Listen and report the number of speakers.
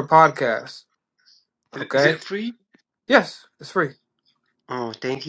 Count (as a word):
two